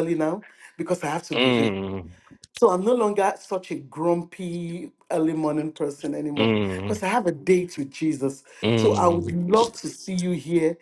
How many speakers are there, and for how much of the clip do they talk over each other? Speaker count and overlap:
two, about 10%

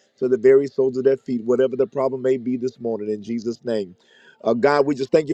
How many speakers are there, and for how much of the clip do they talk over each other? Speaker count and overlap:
one, no overlap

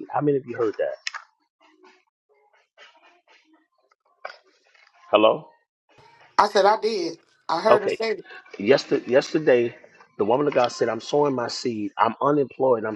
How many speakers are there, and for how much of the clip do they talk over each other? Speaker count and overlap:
two, about 2%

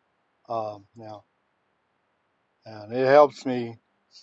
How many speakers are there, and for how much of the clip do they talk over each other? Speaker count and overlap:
one, no overlap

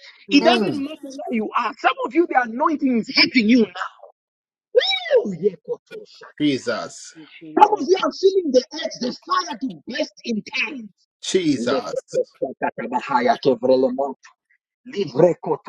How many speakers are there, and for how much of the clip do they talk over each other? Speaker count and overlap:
three, about 8%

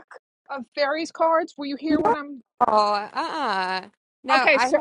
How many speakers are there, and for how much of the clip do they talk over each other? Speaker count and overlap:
two, about 15%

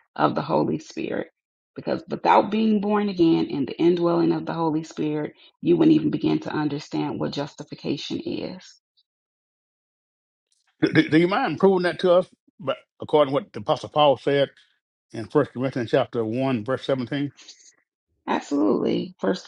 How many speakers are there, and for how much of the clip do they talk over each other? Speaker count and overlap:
two, no overlap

